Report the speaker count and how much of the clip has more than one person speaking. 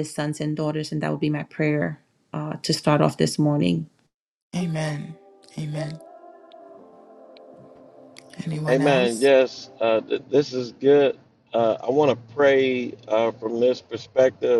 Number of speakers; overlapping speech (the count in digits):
3, about 5%